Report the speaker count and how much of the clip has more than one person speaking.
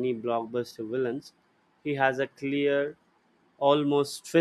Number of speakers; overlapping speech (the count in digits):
1, no overlap